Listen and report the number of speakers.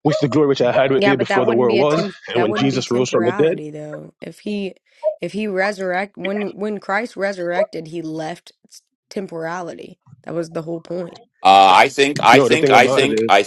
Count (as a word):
three